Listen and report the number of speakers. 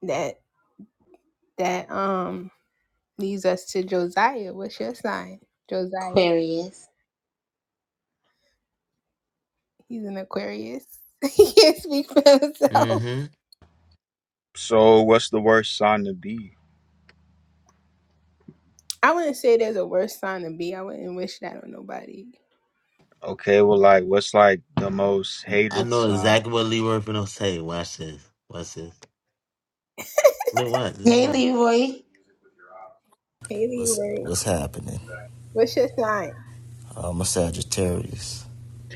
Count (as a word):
five